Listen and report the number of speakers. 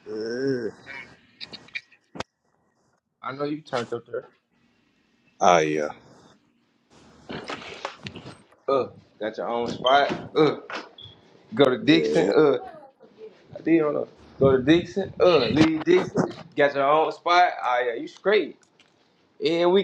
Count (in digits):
2